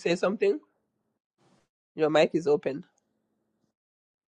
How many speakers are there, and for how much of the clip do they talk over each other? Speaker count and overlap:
one, no overlap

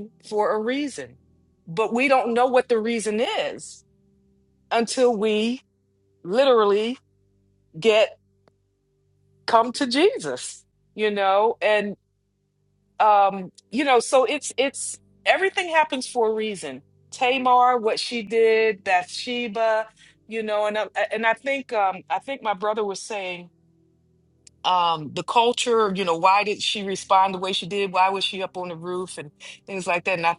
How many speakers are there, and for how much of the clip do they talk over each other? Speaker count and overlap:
one, no overlap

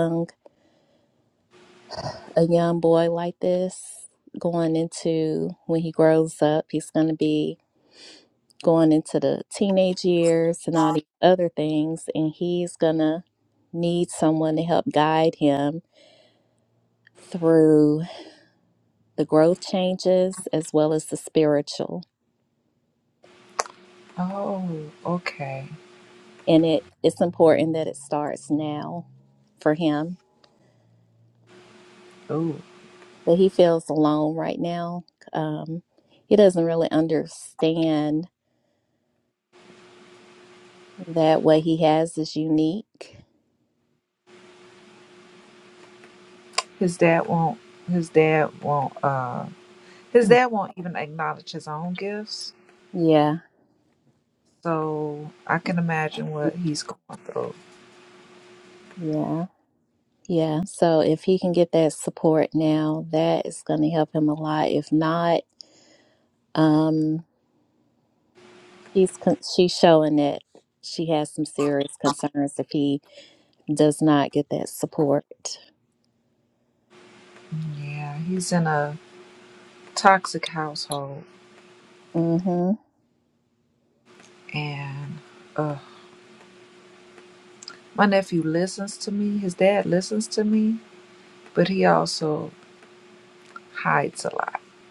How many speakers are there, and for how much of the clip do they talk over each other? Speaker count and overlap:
two, under 1%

